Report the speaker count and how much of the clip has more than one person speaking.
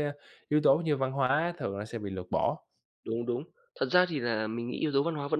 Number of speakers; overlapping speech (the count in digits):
2, no overlap